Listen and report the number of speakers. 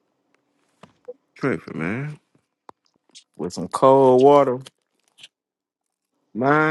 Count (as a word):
two